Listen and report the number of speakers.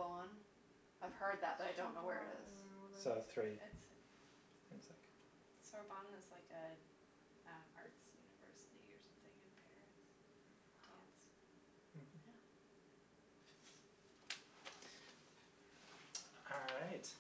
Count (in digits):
4